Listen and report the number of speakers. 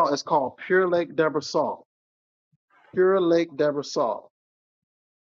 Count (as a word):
one